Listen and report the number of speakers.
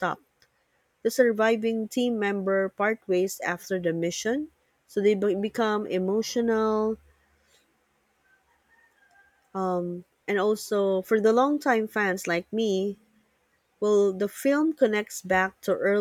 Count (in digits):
1